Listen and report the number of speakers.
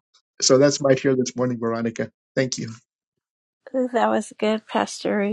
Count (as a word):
two